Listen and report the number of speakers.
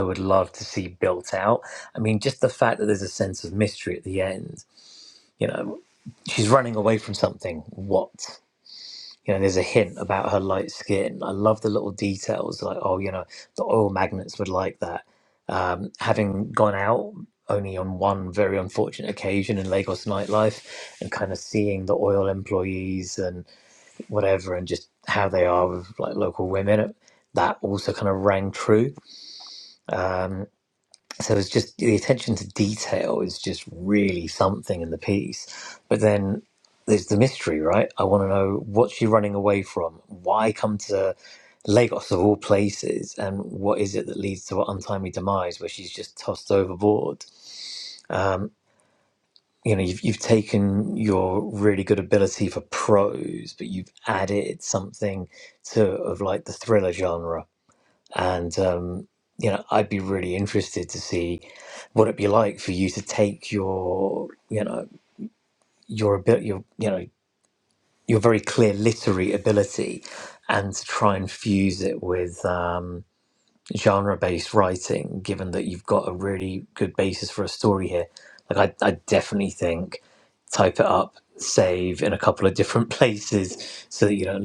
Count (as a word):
one